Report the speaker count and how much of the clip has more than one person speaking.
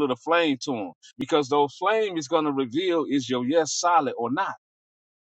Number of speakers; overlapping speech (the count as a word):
one, no overlap